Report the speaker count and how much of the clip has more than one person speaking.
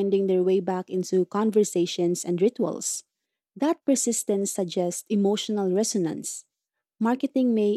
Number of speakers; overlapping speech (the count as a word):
one, no overlap